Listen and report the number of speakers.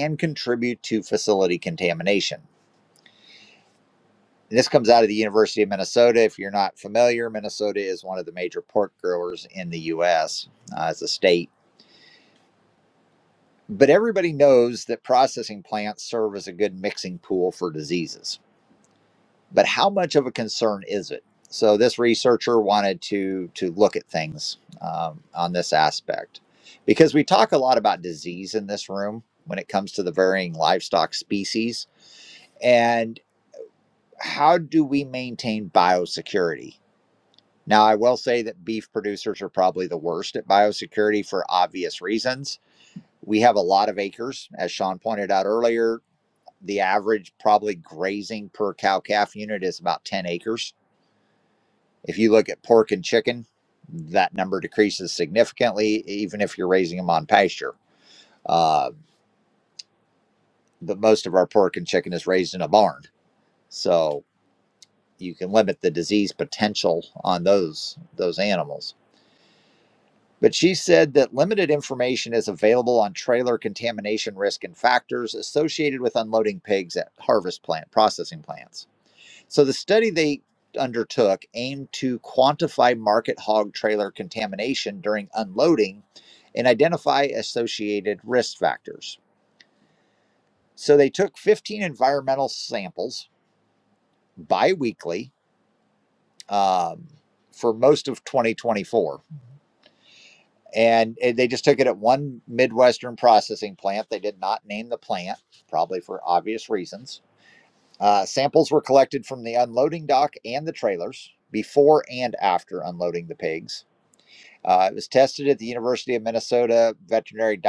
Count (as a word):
one